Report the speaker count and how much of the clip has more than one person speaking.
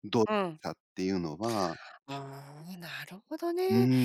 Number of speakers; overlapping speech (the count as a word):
two, about 5%